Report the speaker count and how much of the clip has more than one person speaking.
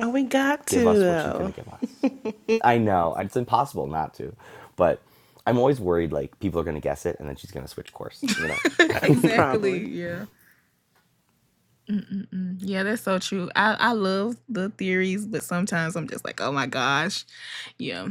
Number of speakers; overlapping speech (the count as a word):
three, about 7%